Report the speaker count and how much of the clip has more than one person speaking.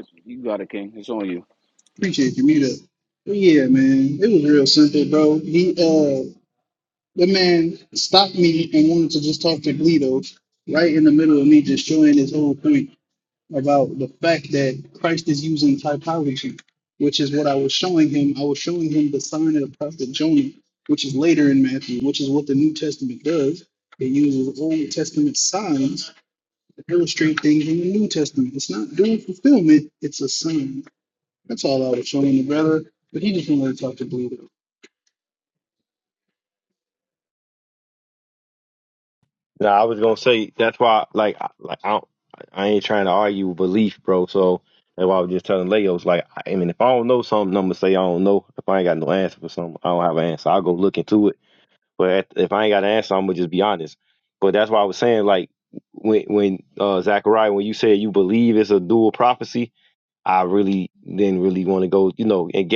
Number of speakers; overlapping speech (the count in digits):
3, no overlap